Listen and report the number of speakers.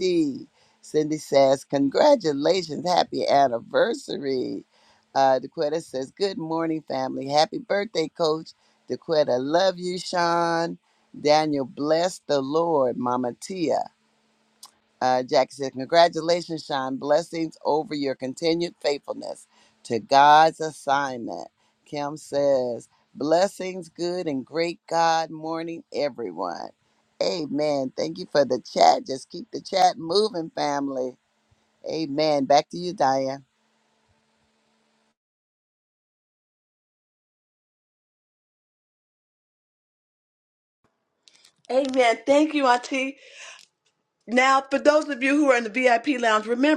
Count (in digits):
2